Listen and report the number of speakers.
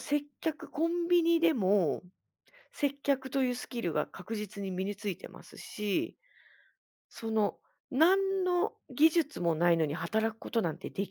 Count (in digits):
1